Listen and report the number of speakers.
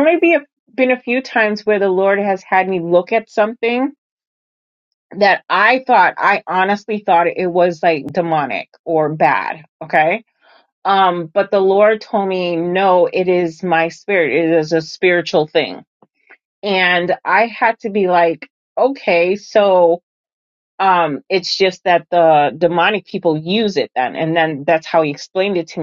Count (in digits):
1